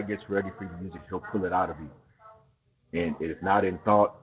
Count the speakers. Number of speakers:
one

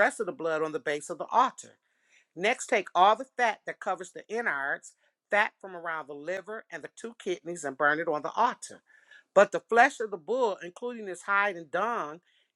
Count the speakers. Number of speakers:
one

